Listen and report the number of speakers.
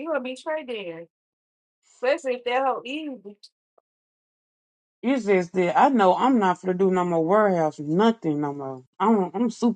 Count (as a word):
two